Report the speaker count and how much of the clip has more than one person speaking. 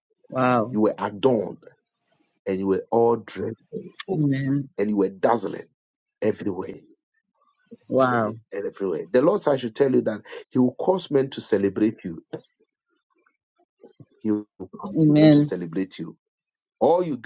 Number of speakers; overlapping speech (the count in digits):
2, about 6%